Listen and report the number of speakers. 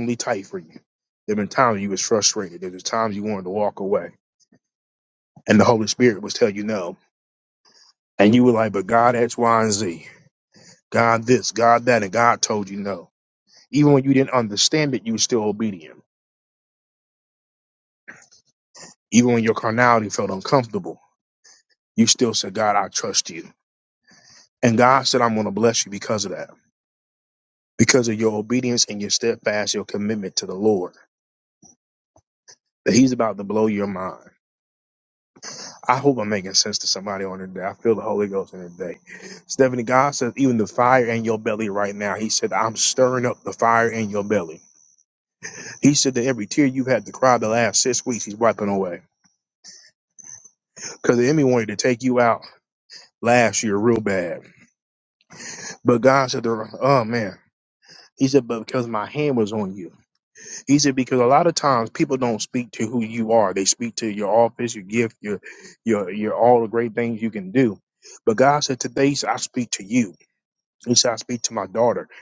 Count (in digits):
1